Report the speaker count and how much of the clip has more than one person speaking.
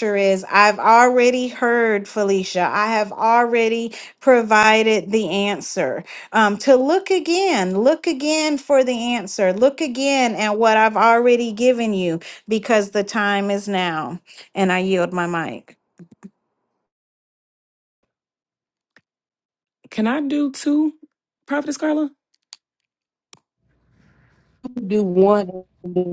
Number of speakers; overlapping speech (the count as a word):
three, no overlap